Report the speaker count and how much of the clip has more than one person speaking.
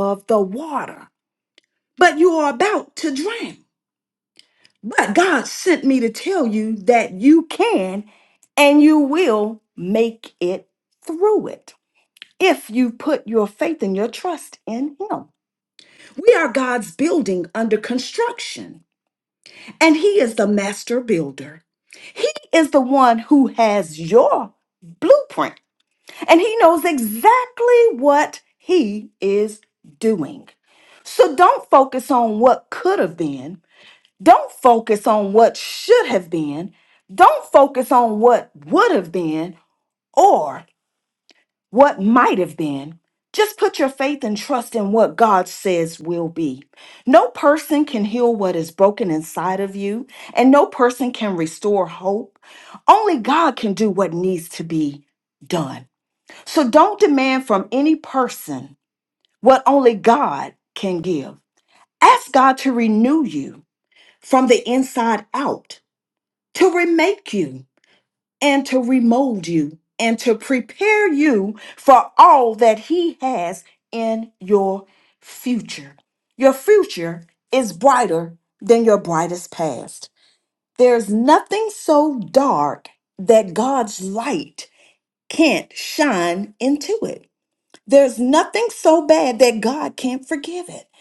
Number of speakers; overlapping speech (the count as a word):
one, no overlap